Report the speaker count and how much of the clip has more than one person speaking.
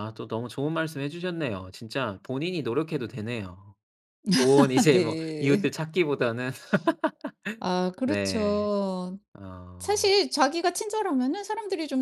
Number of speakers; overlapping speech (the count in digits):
2, about 12%